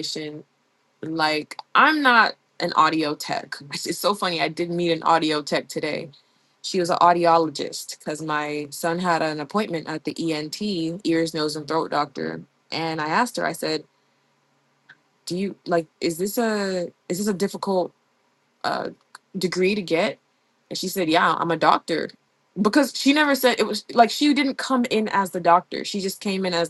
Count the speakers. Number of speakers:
1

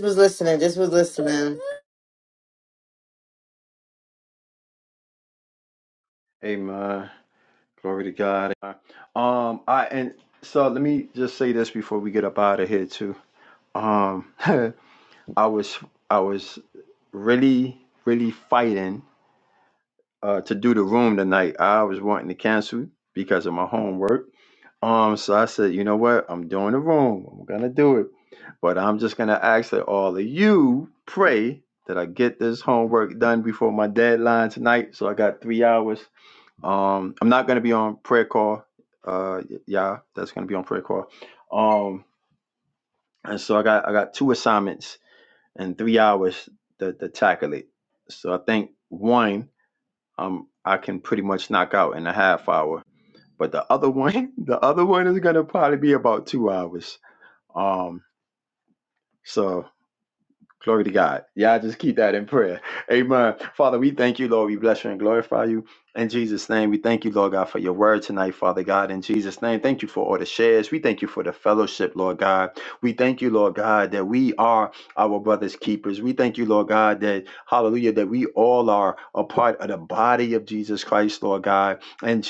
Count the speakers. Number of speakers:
2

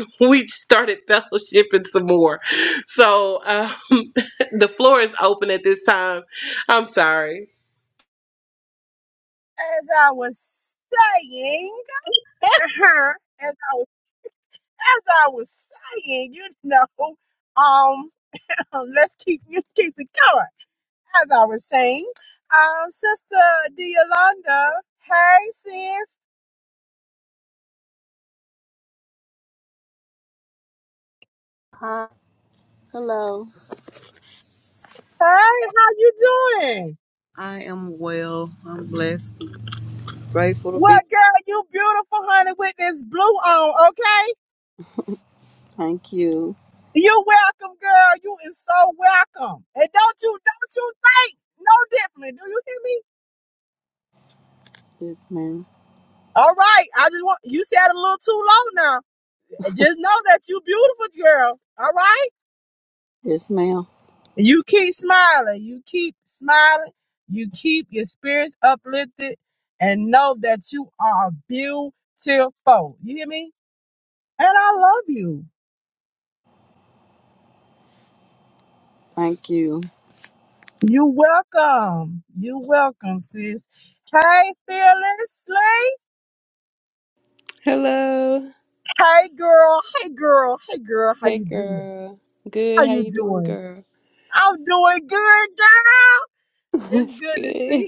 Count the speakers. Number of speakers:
4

